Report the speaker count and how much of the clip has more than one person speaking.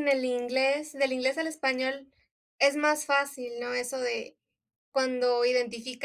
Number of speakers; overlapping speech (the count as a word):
one, no overlap